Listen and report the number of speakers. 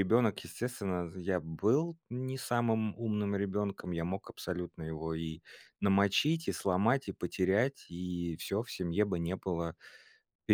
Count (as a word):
one